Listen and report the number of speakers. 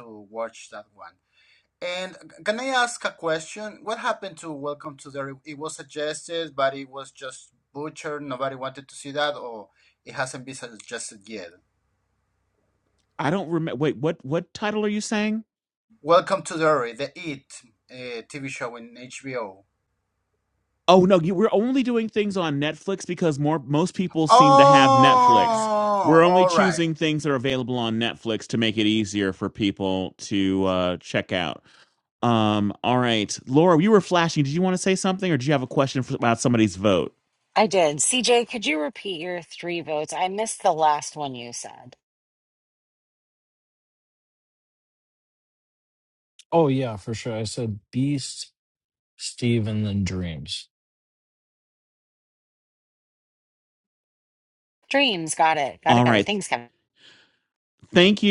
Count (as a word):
four